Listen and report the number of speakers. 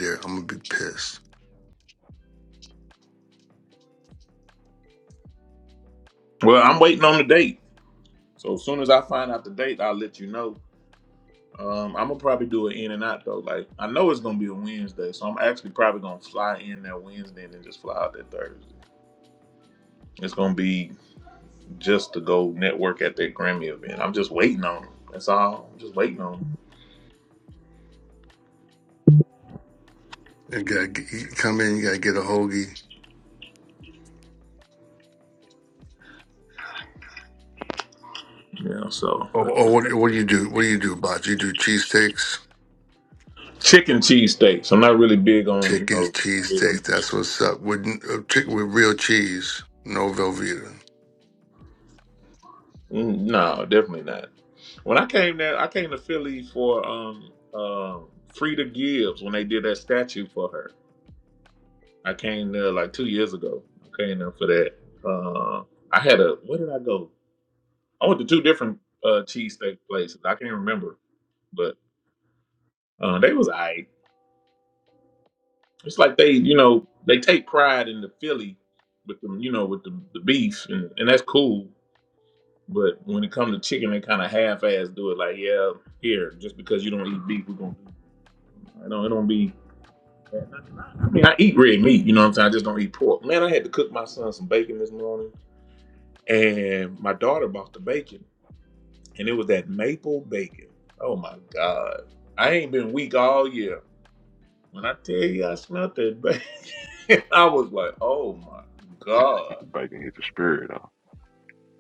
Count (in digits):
3